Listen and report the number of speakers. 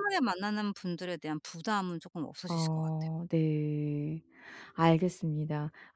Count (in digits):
2